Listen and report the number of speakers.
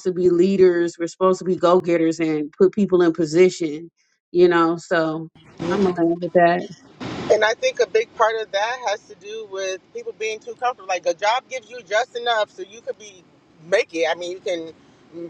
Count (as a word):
two